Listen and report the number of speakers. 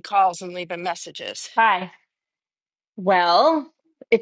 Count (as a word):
two